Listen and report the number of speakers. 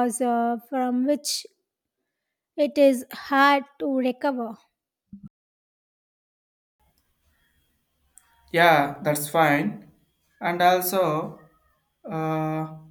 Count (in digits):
2